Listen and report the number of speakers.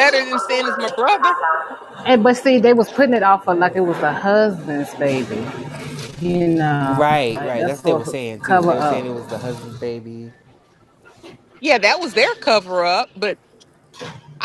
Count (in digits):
3